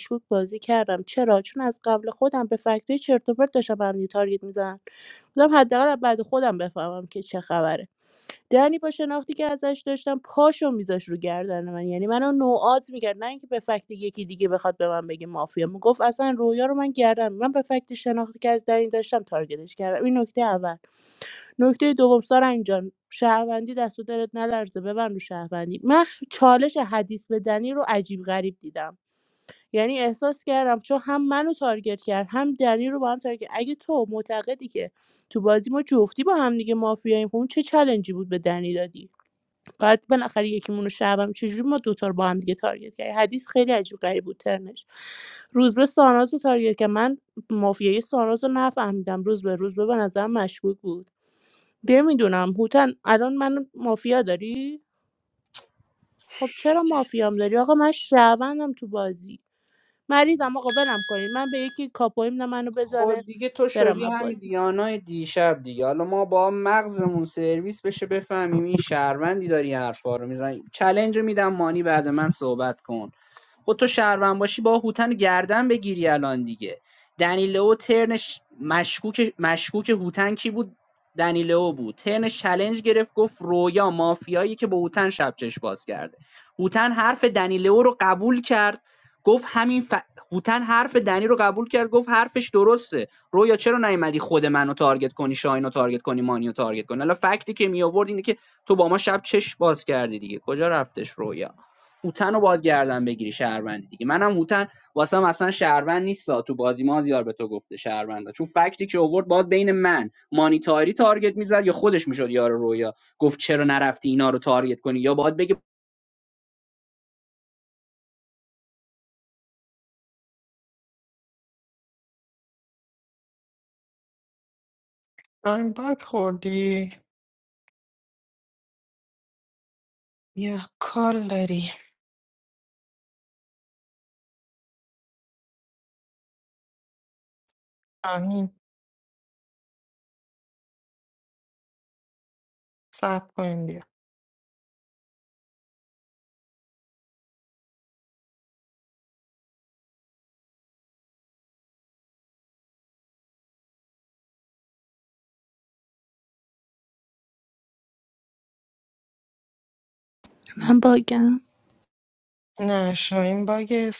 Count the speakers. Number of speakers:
3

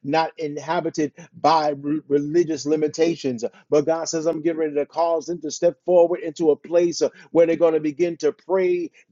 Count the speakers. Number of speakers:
1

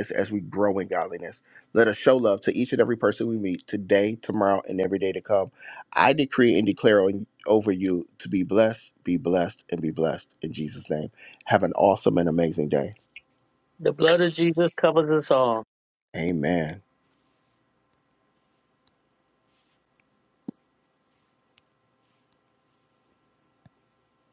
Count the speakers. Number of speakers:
2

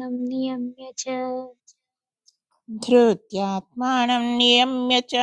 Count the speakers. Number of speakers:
2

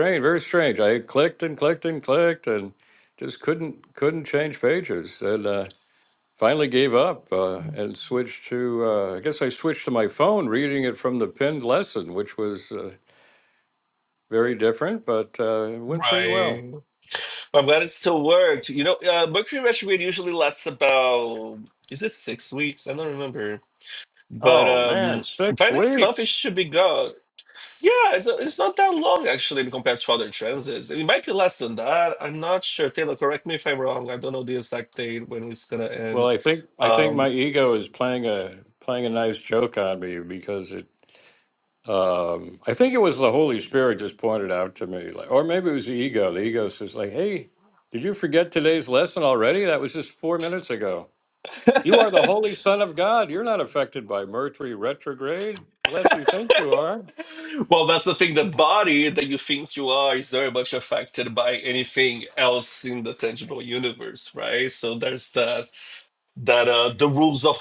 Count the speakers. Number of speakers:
2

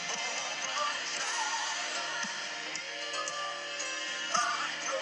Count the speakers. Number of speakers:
0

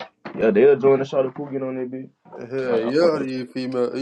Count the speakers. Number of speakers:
2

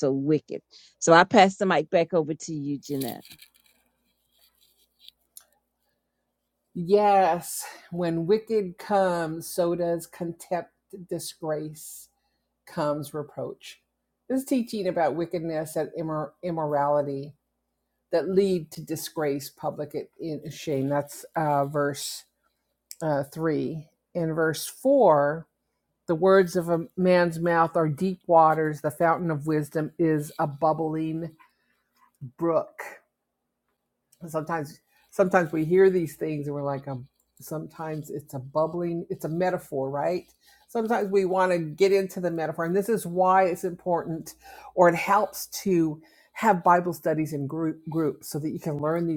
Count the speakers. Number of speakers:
2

